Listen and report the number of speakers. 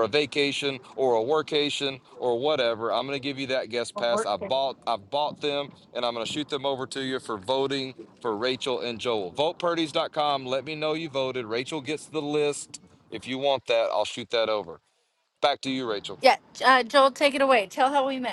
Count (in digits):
2